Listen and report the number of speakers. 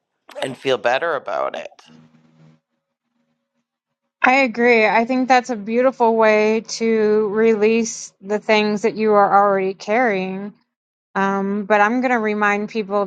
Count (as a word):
two